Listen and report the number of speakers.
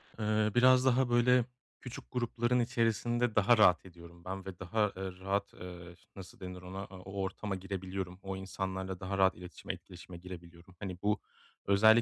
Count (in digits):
1